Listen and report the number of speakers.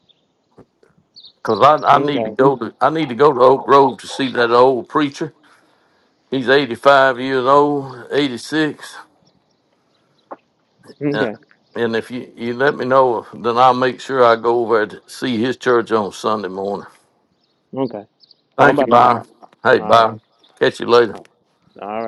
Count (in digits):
2